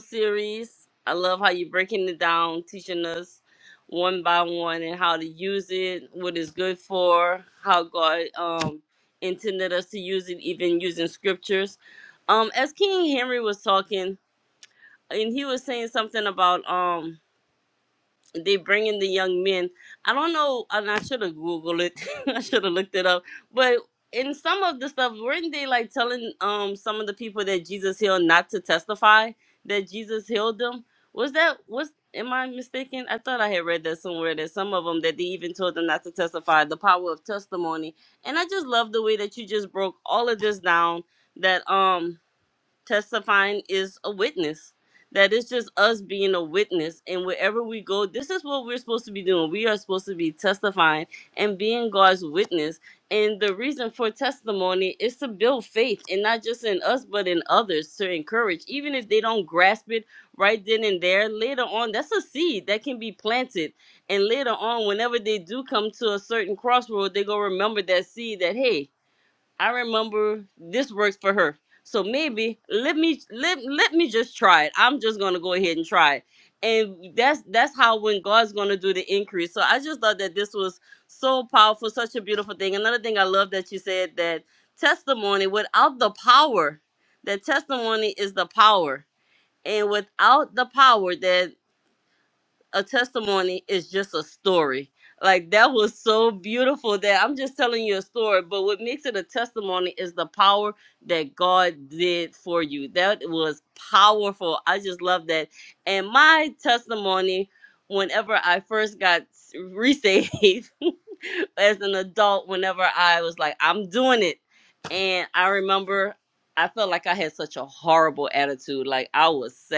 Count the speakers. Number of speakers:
one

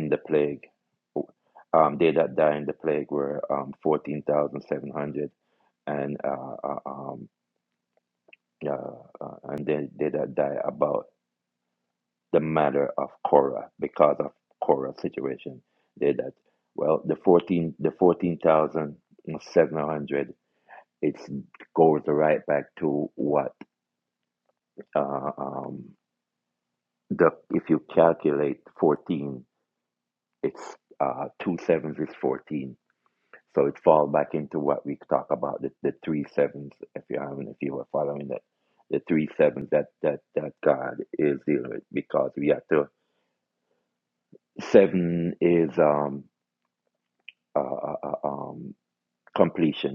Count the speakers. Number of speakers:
one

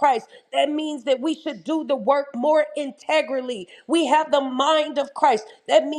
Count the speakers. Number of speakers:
one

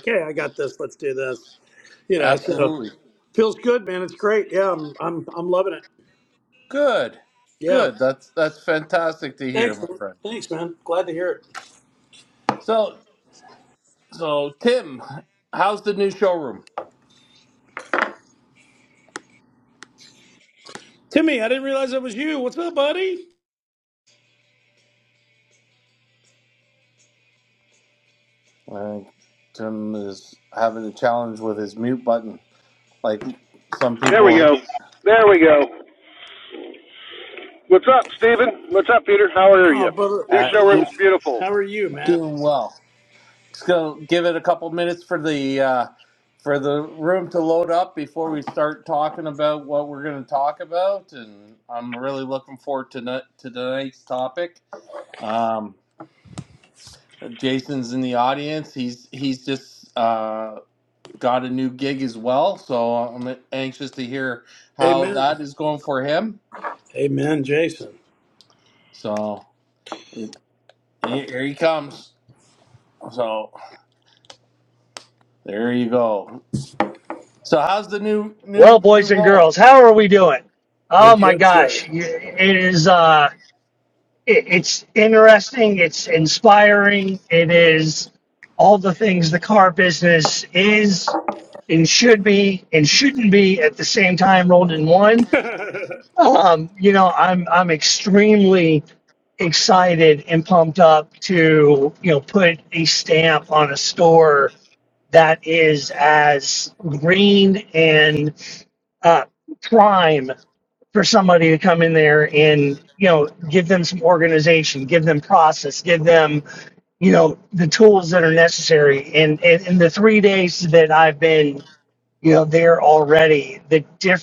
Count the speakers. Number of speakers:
four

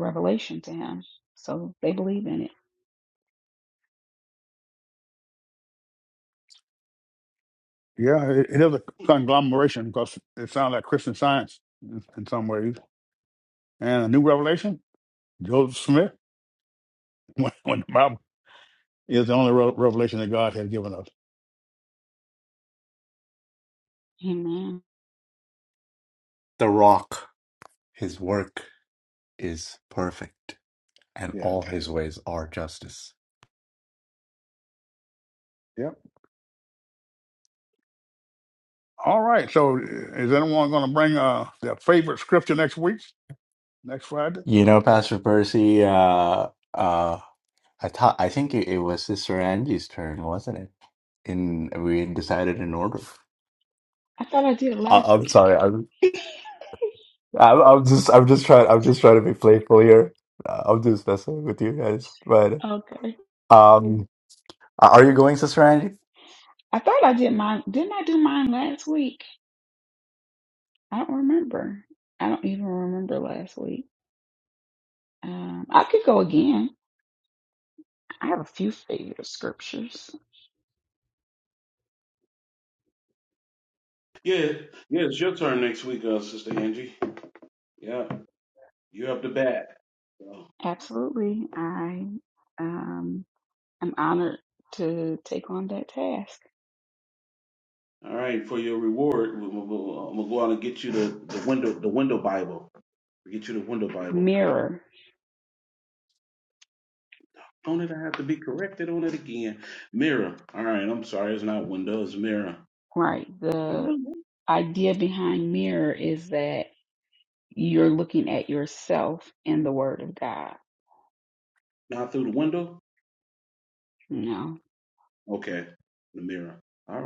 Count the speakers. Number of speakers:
four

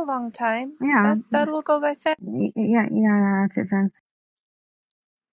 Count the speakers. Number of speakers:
two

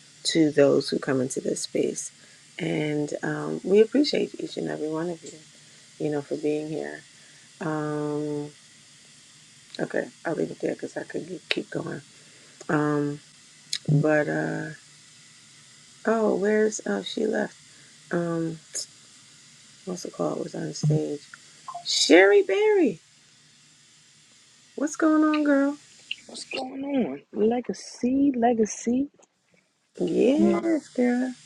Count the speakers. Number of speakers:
two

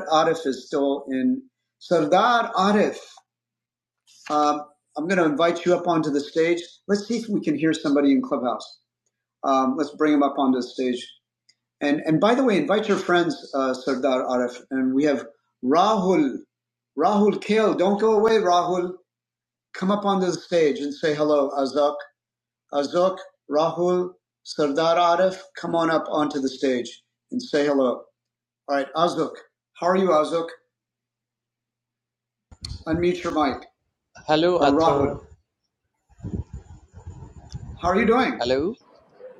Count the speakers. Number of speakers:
two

